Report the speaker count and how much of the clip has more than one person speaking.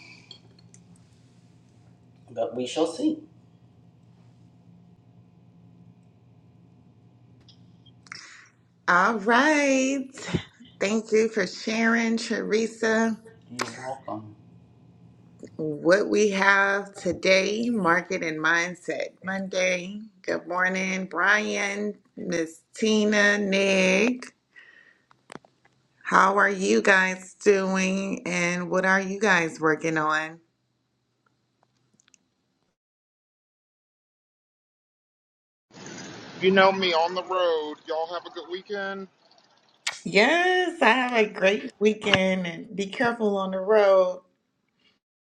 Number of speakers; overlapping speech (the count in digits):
3, no overlap